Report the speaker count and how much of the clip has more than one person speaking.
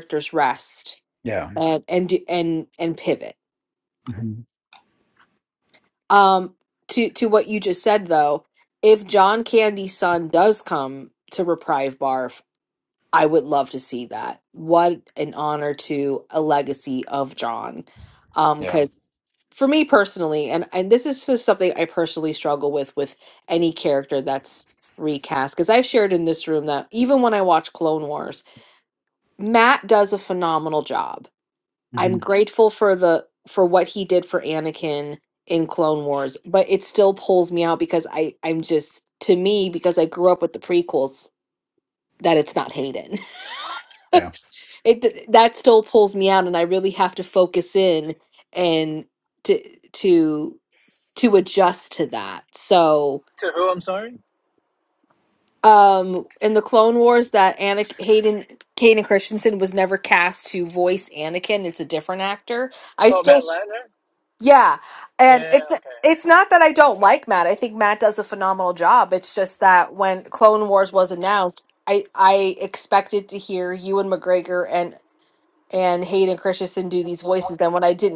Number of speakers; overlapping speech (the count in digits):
3, about 3%